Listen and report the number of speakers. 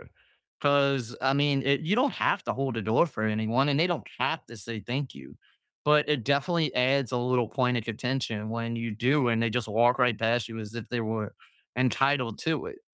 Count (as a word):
one